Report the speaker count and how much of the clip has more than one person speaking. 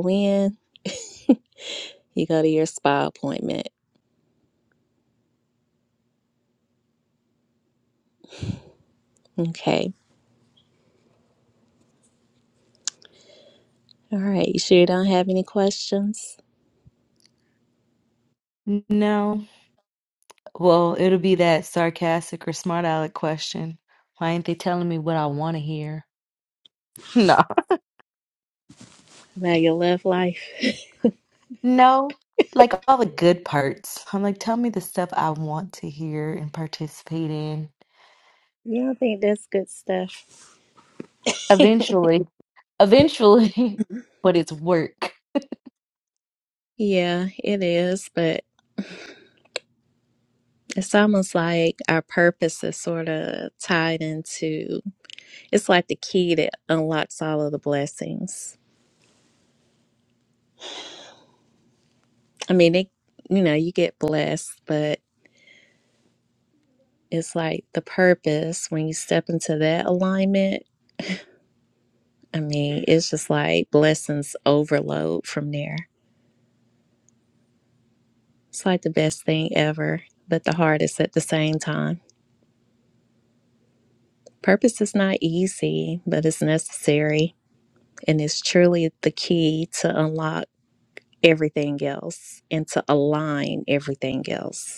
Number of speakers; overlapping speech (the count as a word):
two, no overlap